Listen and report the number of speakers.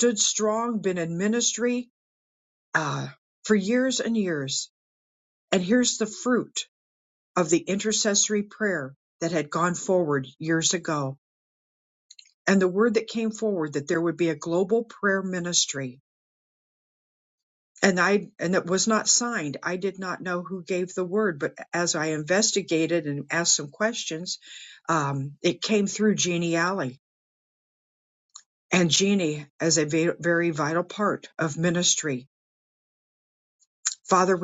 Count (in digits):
1